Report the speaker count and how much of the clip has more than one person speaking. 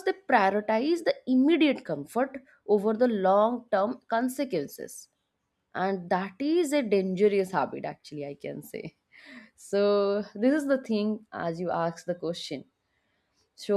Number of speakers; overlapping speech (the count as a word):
one, no overlap